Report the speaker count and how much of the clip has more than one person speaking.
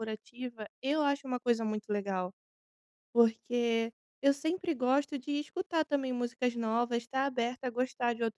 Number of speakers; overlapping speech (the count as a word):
one, no overlap